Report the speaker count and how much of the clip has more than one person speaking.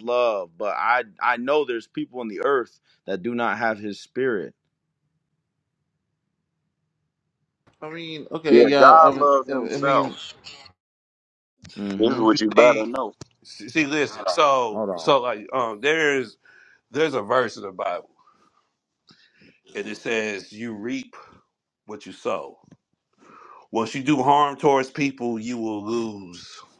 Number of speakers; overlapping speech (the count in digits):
4, about 10%